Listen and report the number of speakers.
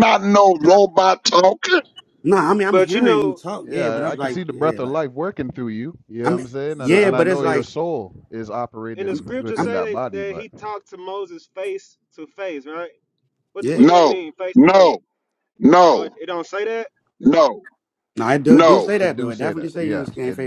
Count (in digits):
4